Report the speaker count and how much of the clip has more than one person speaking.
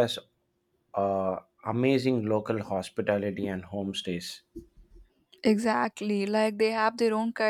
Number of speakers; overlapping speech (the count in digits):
2, no overlap